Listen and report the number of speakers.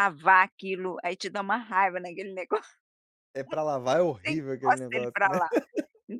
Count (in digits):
2